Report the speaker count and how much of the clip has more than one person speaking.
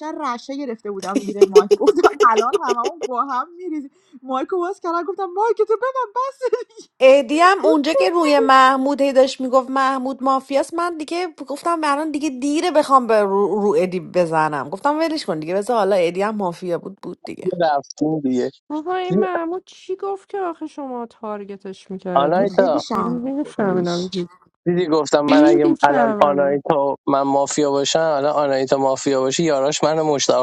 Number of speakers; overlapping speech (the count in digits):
4, about 11%